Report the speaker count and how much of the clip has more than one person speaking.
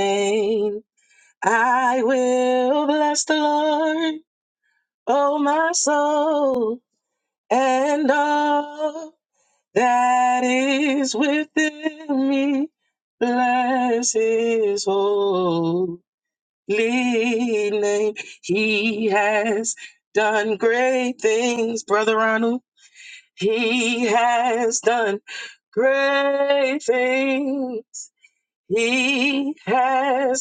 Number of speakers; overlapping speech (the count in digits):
1, no overlap